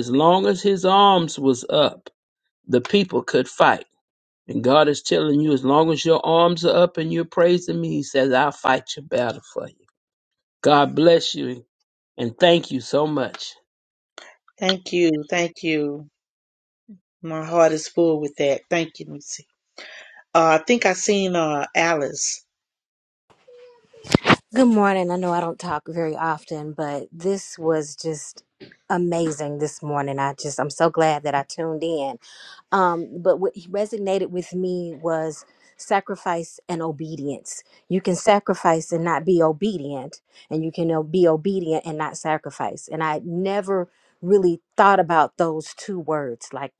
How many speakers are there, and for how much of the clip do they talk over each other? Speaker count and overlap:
3, no overlap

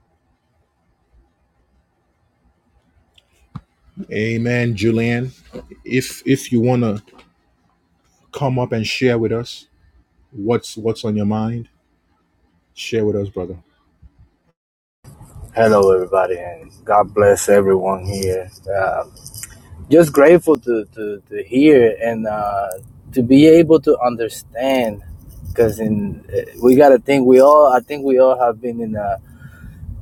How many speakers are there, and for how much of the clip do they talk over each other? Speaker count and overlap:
2, no overlap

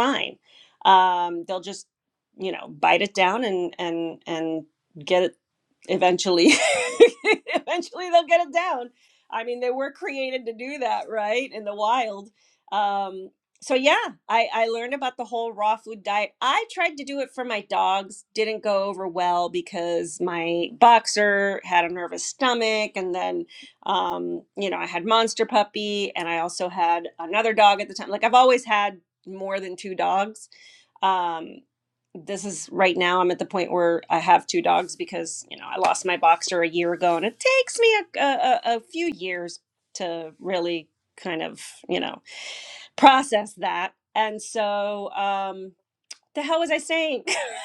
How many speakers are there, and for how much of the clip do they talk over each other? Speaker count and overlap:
1, no overlap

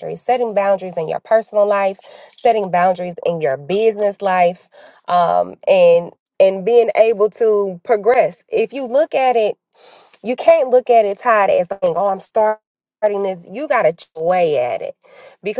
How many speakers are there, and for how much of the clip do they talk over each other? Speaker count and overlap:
1, no overlap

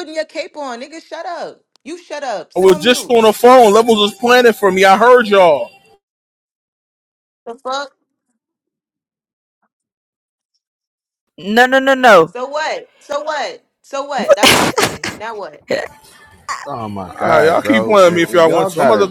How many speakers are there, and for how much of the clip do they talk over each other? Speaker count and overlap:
4, about 15%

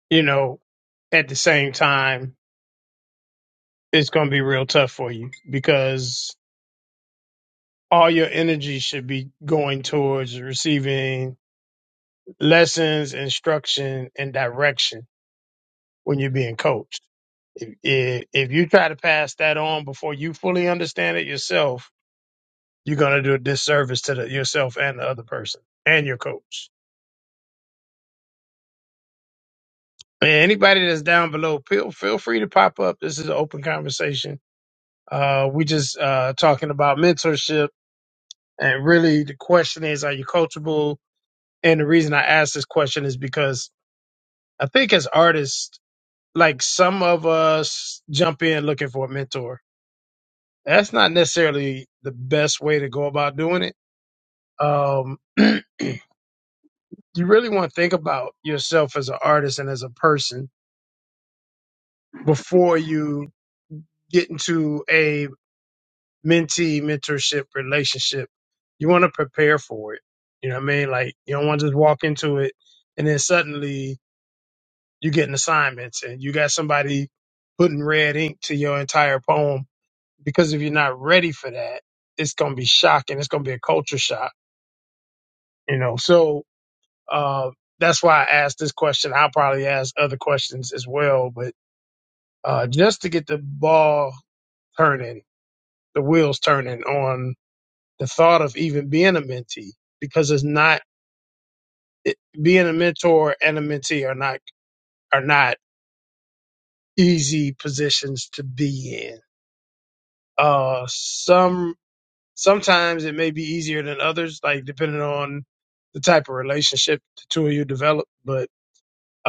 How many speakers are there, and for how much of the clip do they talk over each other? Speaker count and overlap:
1, no overlap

